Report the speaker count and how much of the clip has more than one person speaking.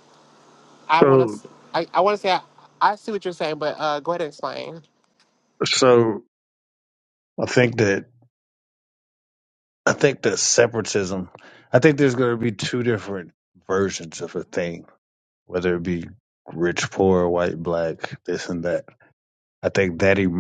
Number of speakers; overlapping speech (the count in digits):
2, about 2%